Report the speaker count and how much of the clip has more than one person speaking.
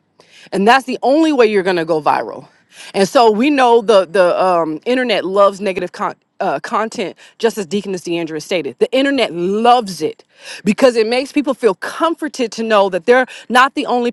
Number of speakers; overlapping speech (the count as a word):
one, no overlap